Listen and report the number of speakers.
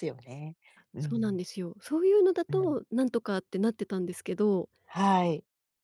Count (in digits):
2